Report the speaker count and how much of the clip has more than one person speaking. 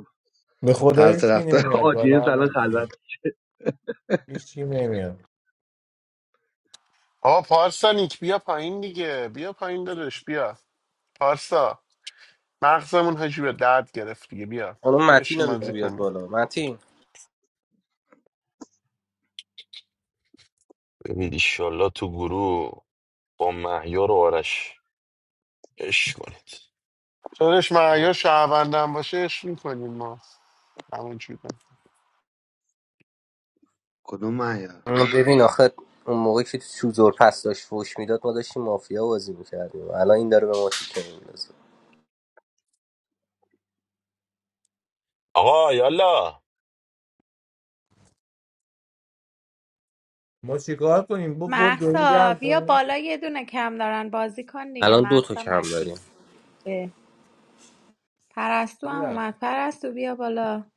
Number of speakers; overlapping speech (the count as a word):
six, about 10%